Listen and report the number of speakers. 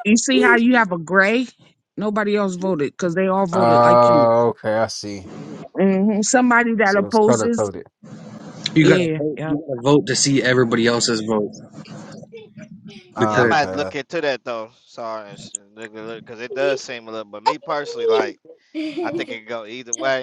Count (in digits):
4